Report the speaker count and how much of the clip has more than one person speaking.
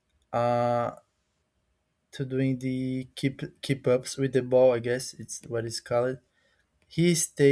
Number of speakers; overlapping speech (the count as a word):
one, no overlap